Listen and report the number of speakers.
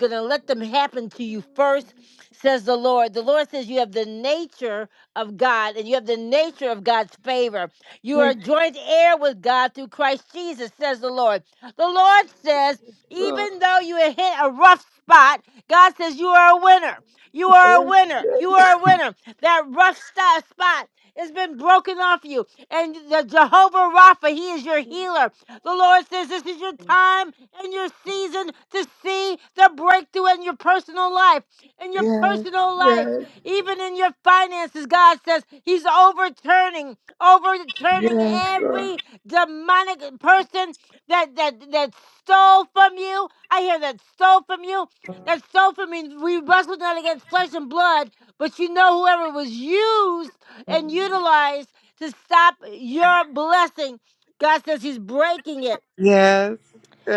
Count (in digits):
2